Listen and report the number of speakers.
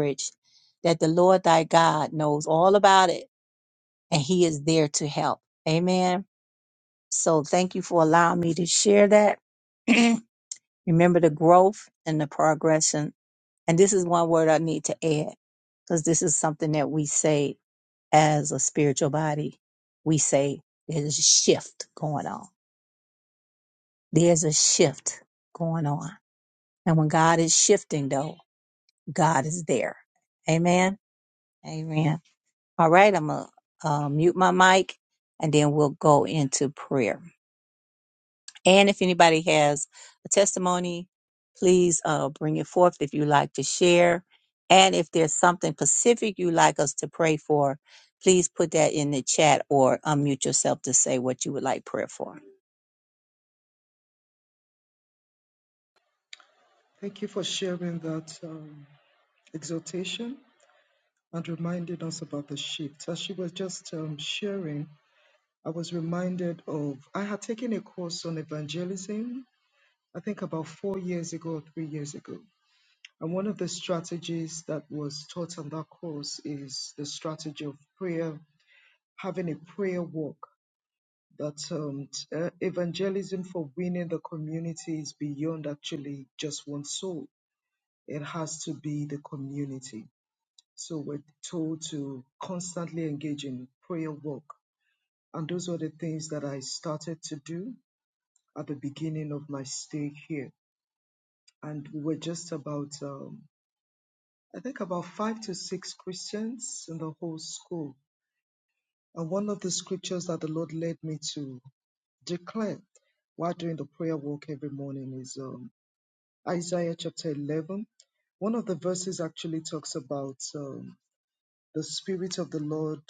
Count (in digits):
2